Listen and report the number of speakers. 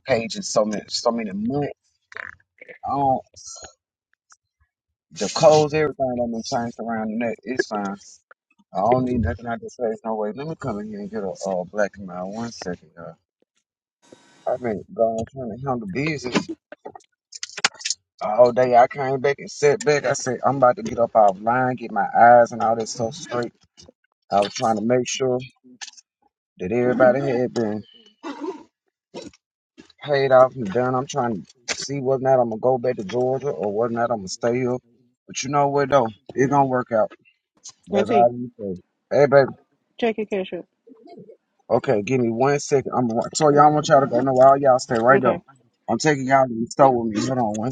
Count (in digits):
2